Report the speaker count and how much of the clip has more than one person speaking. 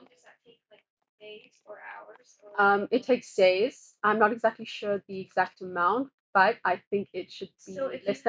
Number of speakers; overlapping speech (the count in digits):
2, about 22%